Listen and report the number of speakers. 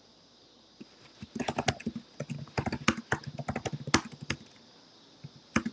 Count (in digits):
0